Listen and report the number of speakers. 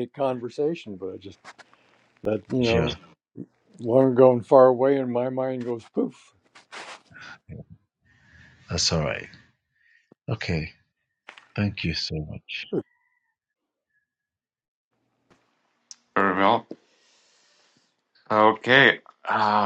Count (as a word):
three